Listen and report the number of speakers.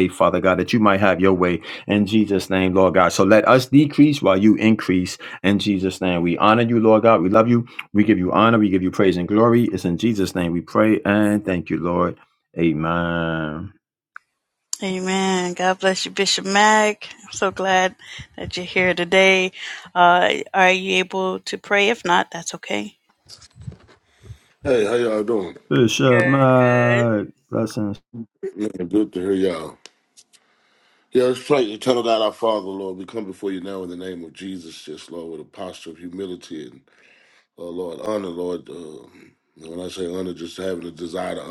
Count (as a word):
three